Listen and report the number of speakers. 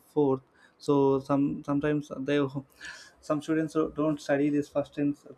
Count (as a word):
one